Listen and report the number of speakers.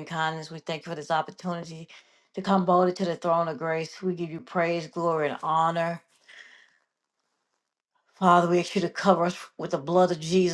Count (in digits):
1